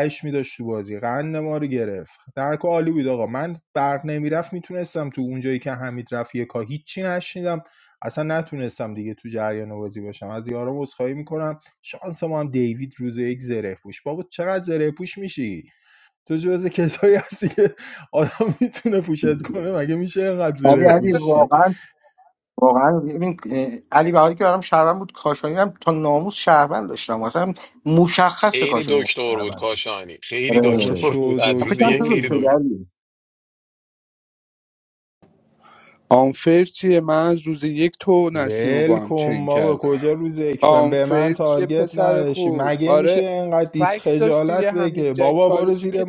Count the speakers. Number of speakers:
4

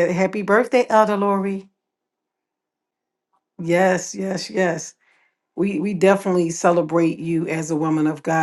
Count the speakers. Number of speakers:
1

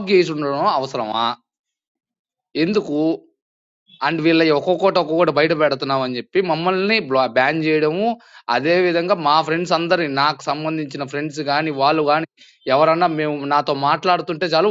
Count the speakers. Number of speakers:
1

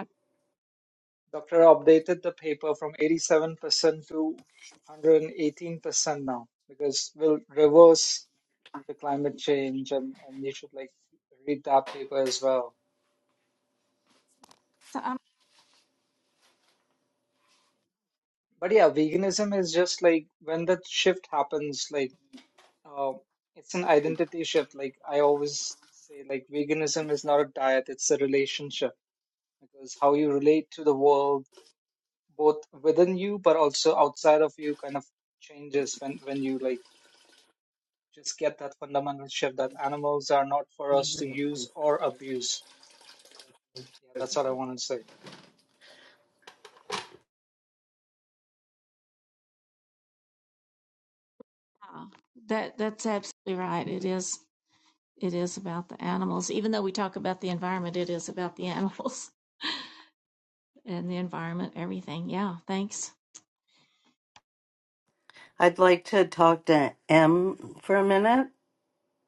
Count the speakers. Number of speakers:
3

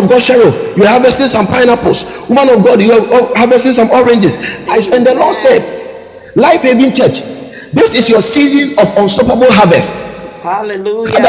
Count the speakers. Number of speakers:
2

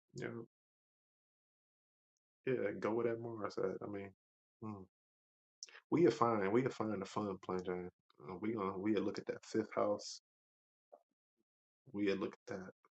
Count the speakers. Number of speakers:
1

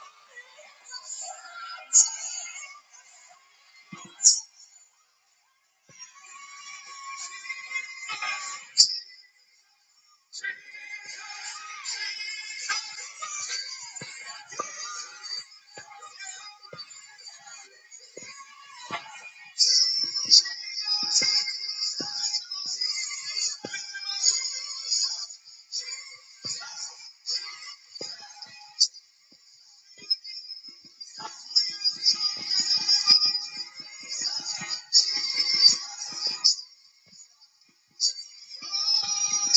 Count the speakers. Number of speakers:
0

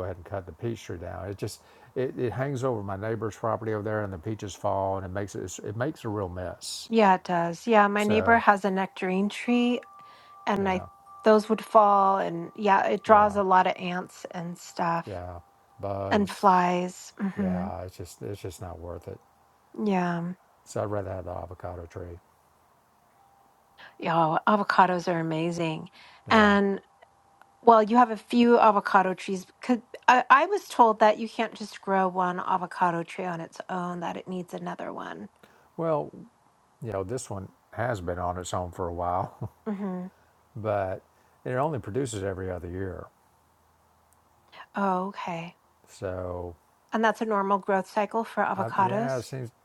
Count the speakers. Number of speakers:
2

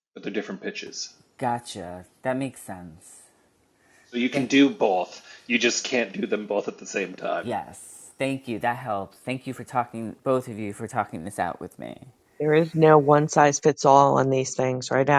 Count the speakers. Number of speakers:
3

